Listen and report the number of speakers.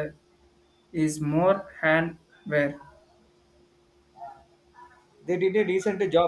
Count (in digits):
2